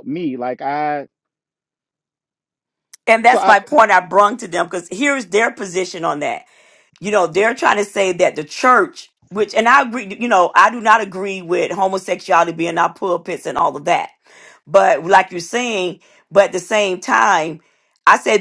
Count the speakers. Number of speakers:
two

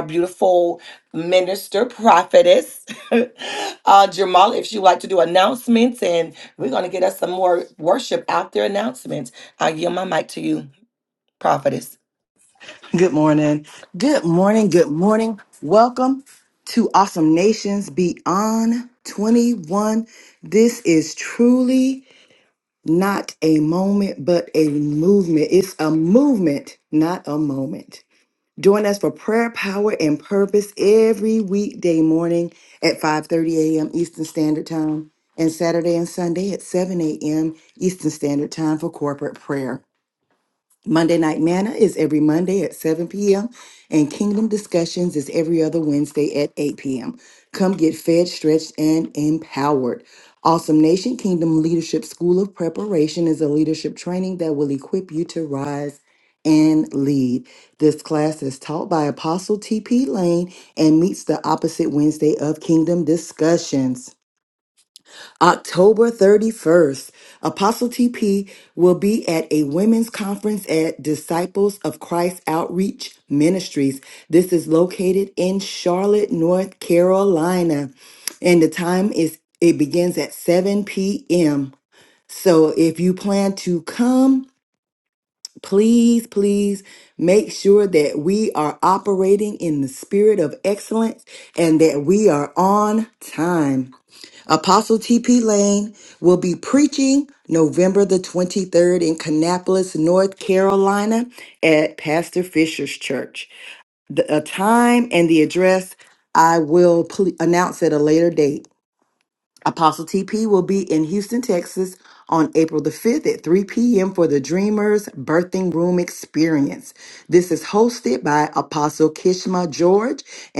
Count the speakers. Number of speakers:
two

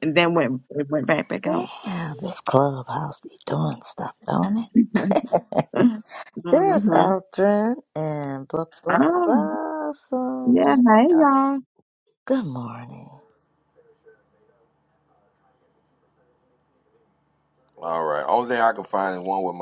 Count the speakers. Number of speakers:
three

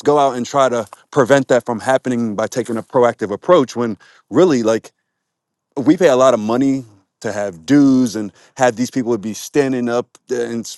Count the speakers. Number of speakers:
one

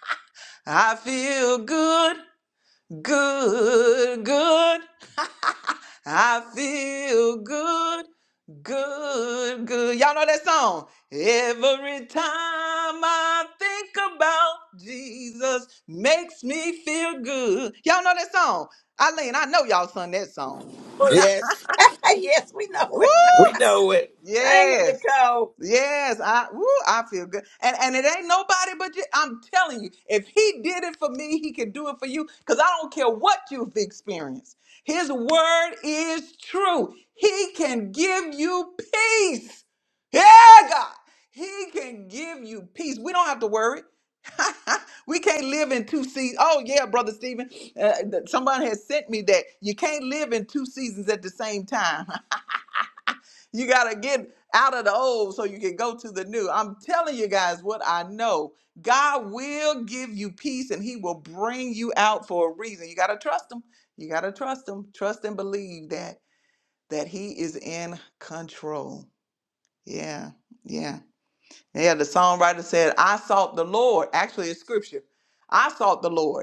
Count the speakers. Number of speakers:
three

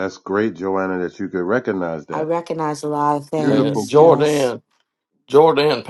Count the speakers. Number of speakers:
three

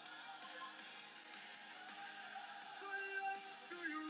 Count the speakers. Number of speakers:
zero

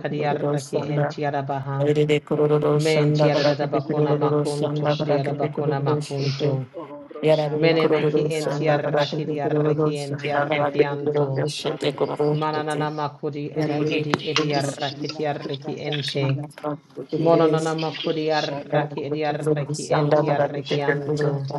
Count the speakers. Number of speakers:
three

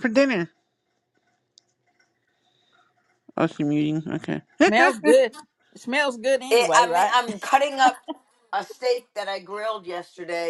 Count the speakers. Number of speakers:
three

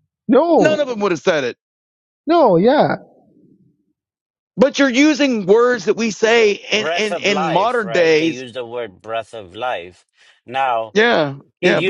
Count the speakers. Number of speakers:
three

